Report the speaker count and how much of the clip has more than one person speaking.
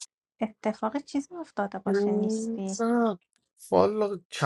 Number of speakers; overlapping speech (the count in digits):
2, about 20%